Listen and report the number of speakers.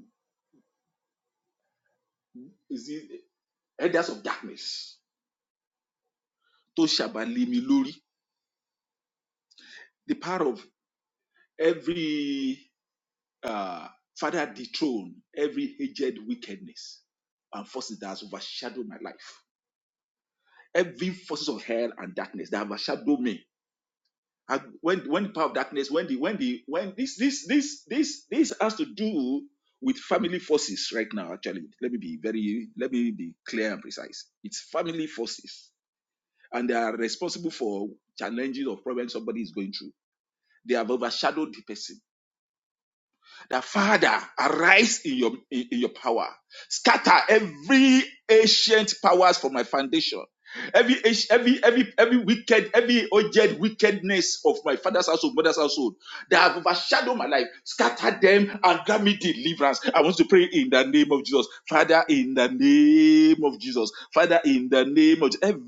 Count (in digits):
1